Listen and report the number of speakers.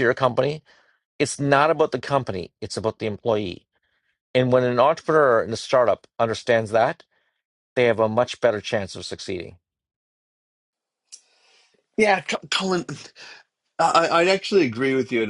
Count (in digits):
2